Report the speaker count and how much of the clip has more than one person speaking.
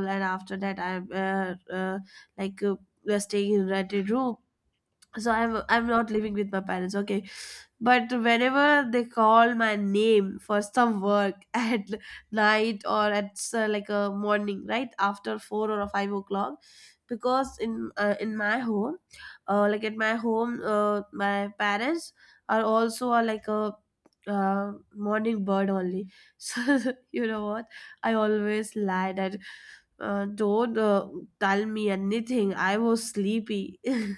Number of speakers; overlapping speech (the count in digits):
1, no overlap